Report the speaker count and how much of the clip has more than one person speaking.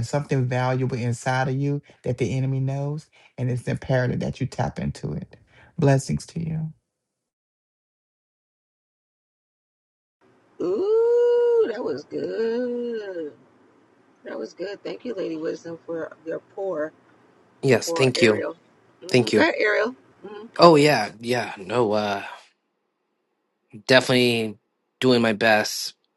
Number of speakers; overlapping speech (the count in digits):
3, about 3%